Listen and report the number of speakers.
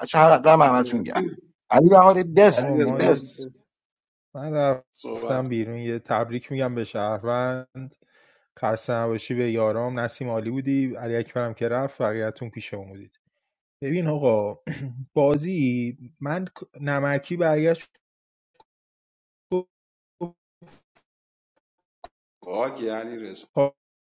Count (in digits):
3